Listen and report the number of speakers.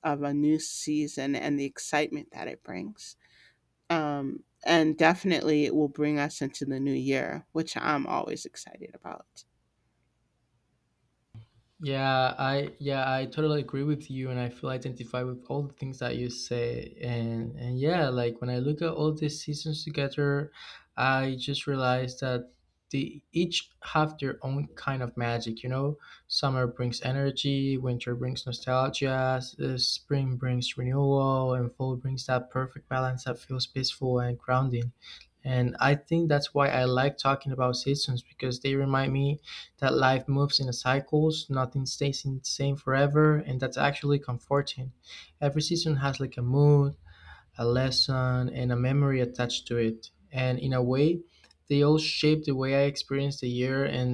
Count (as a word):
two